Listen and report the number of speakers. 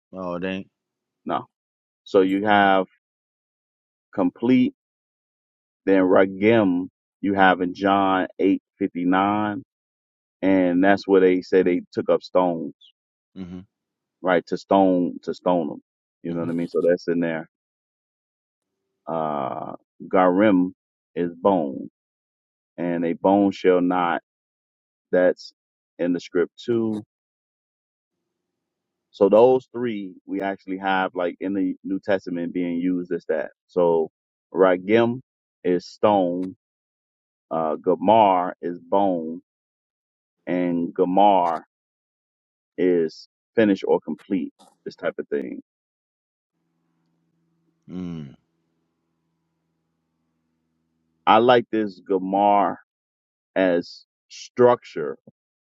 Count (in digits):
2